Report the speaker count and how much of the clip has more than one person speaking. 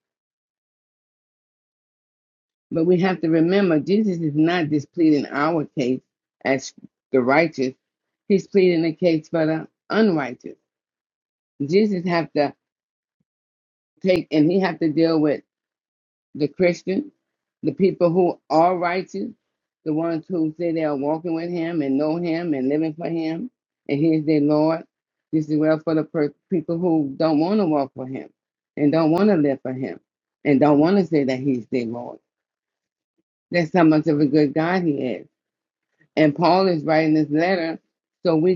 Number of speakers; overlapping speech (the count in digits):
1, no overlap